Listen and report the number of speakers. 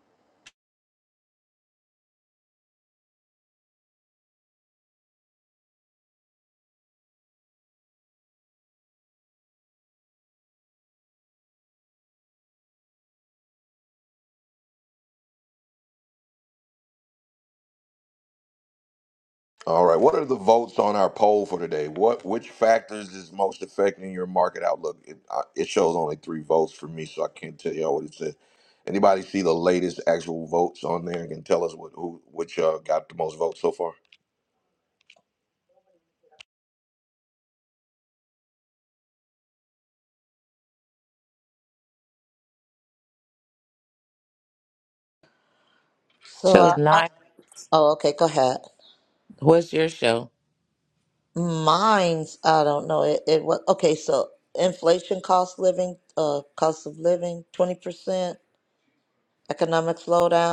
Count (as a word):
three